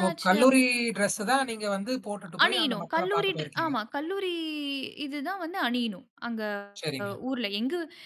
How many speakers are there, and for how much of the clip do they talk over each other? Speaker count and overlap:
two, about 24%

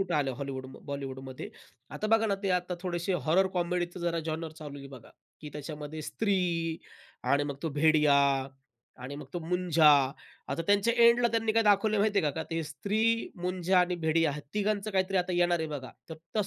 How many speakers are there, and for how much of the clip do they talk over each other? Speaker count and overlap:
one, no overlap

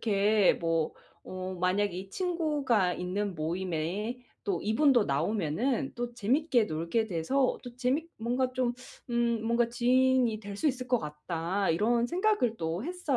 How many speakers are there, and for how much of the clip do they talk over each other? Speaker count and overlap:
one, no overlap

